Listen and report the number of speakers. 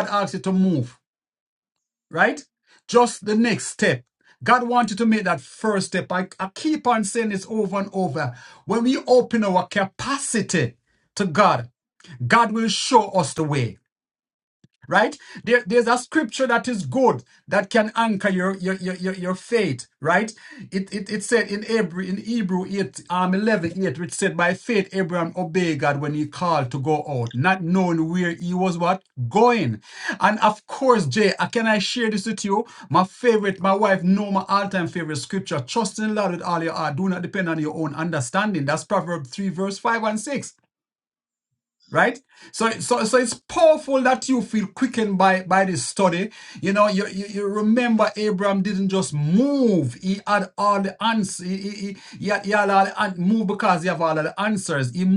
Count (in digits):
1